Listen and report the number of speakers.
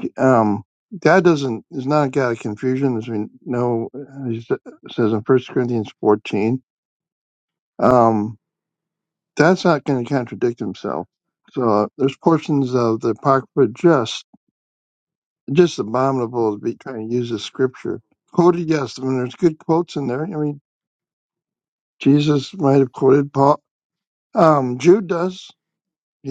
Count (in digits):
1